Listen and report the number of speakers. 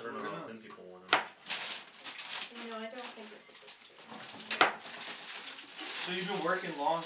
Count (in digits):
3